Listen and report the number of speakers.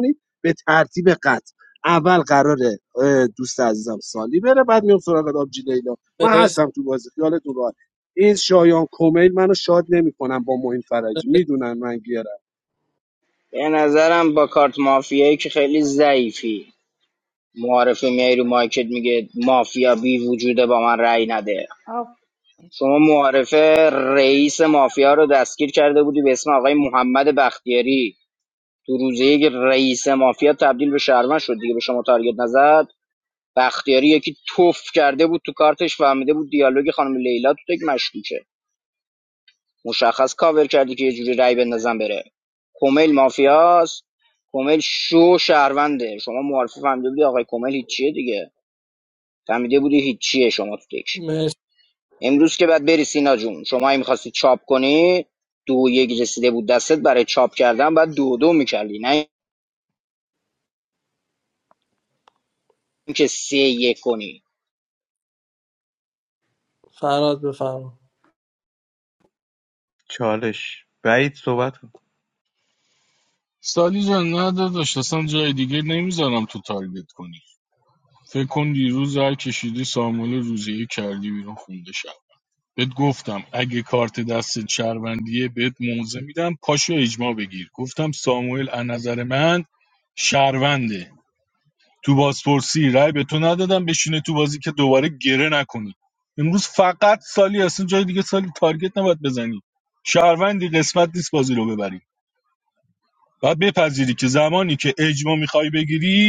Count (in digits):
5